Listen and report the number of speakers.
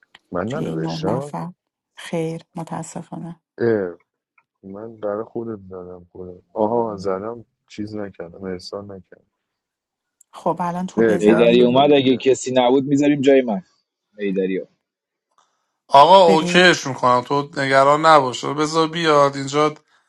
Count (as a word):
four